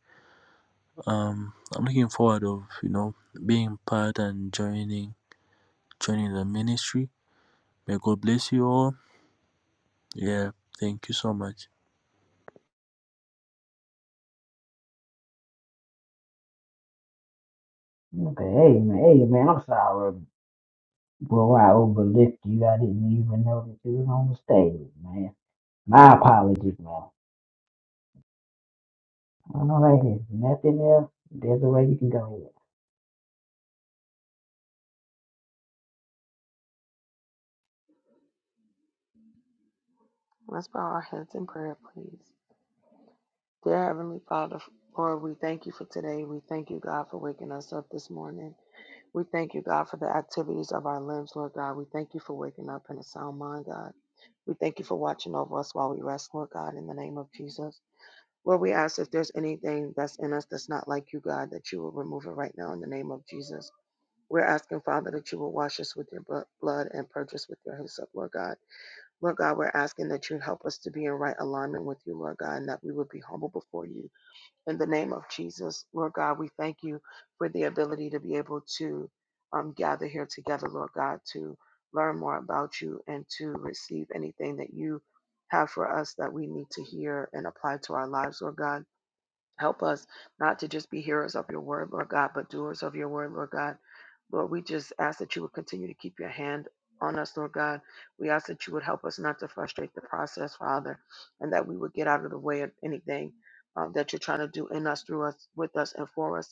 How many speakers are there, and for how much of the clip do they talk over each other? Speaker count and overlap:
three, no overlap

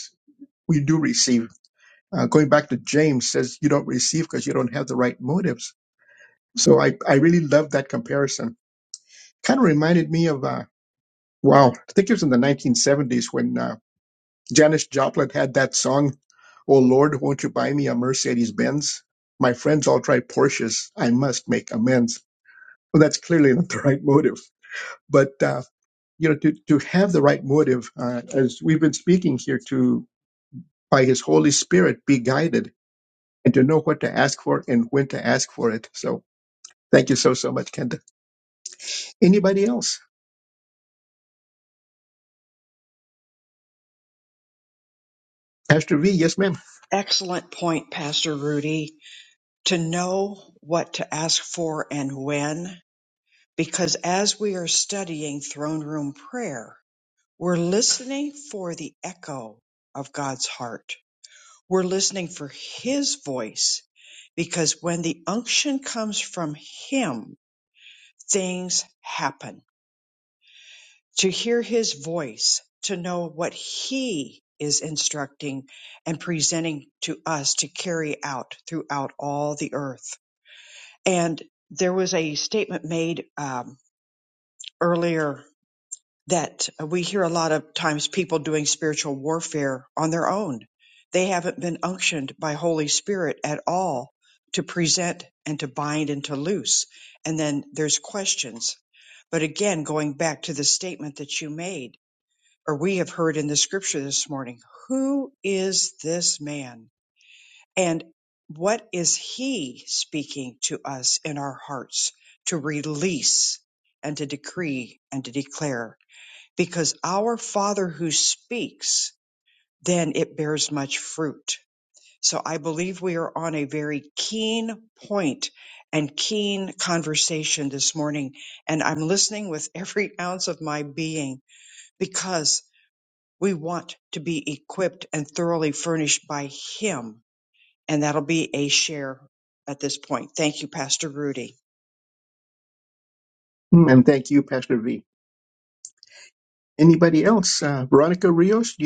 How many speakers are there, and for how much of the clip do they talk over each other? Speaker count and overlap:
two, no overlap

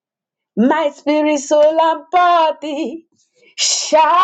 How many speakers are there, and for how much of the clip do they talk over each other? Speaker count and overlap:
one, no overlap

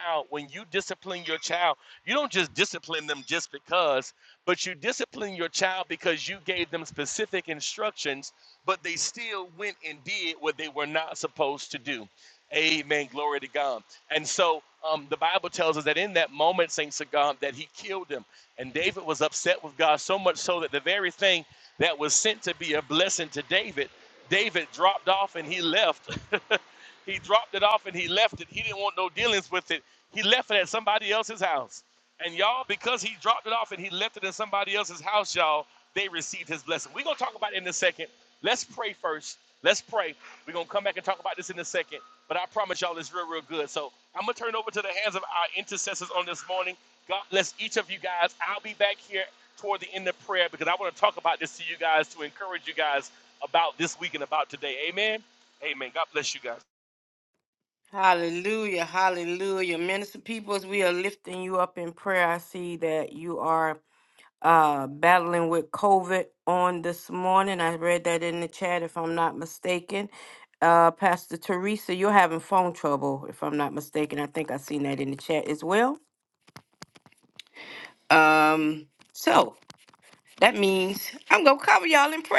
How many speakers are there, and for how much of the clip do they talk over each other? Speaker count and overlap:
two, no overlap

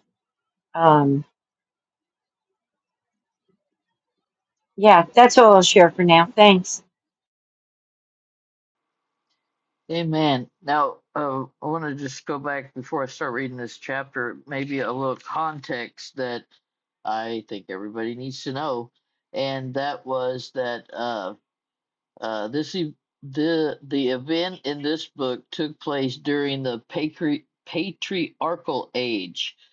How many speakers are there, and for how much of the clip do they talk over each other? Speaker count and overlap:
two, no overlap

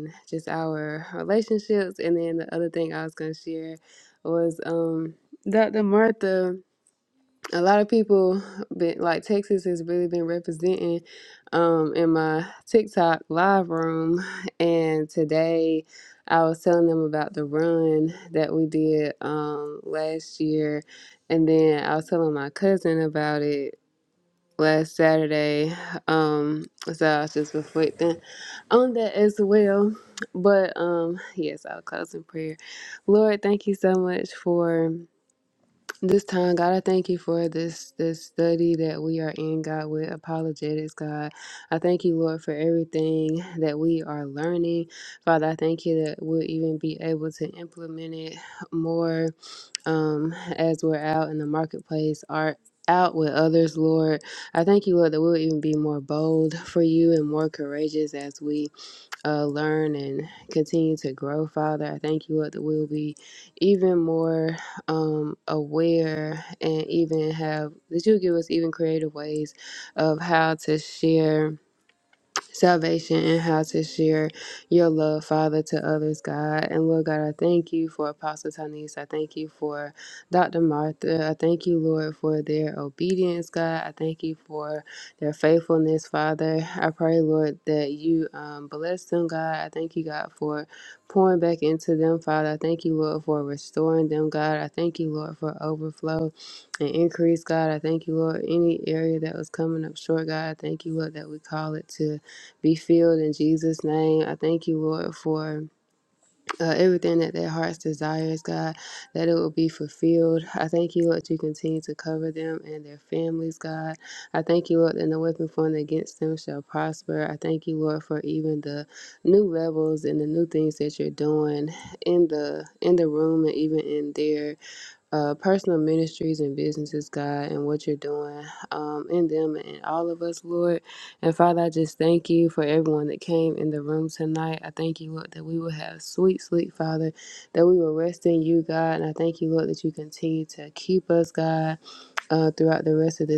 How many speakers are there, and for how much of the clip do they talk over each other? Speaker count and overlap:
one, no overlap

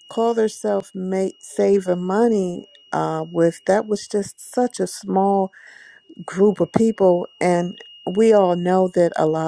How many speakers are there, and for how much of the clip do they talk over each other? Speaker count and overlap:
one, no overlap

